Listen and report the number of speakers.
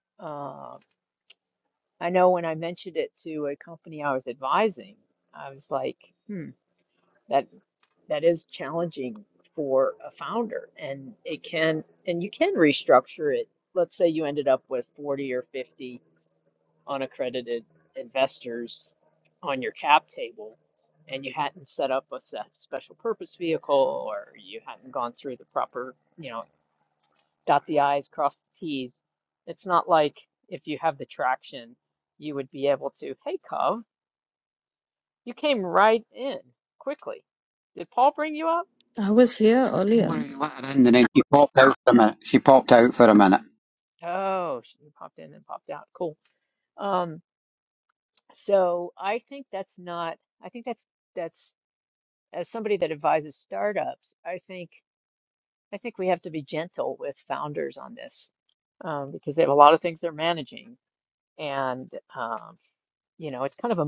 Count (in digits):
3